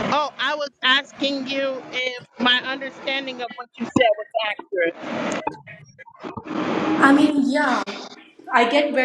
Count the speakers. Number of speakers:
two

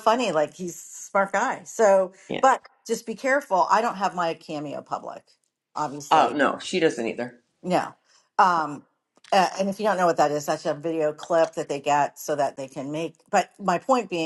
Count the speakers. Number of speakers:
two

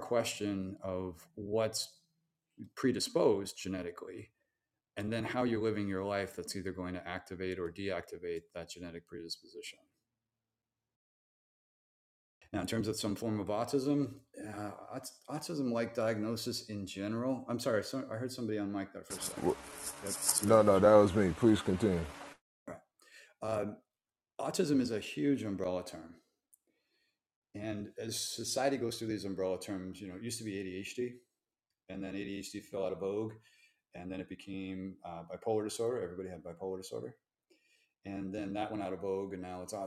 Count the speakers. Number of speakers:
two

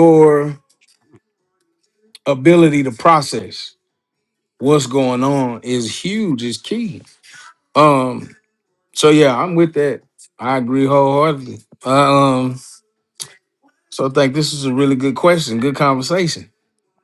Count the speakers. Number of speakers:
one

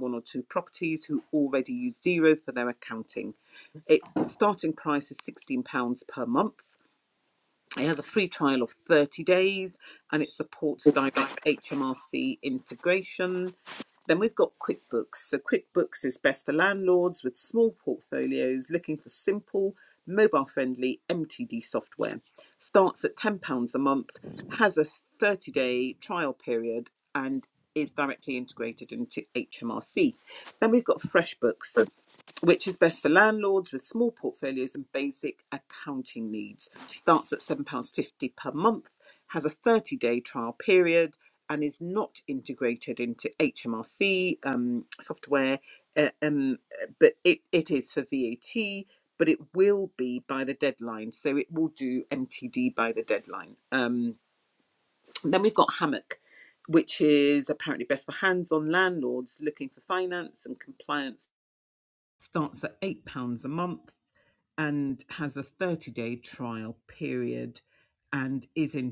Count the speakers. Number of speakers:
one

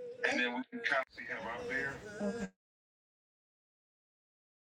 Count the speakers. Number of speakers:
zero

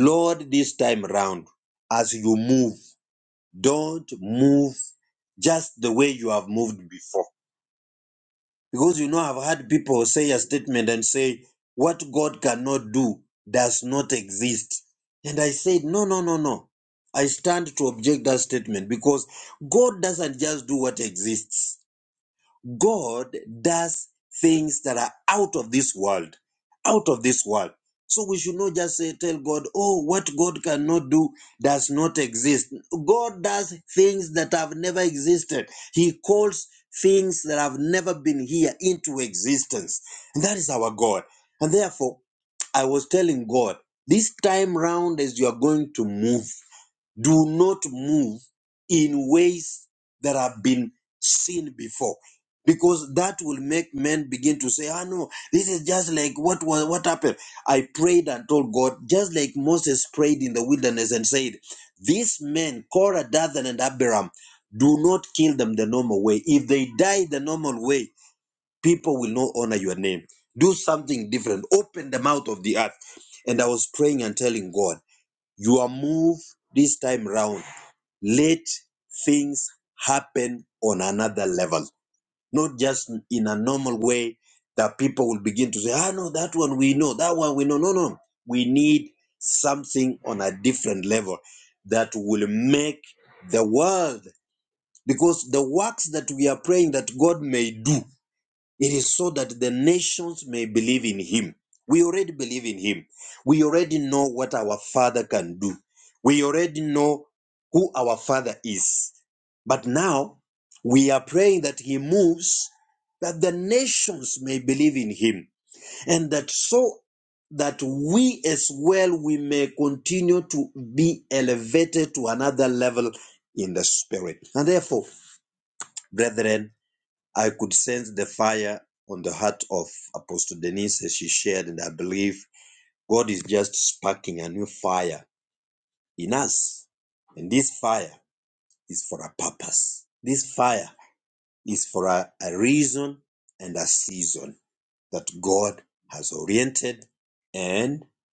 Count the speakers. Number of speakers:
one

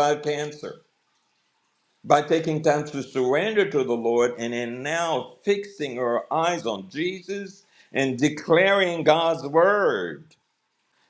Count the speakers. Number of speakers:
one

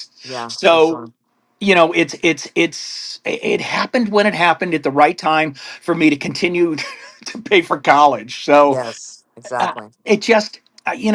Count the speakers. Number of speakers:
two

